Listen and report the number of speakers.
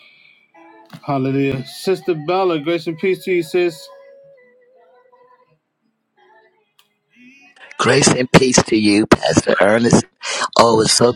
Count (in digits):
2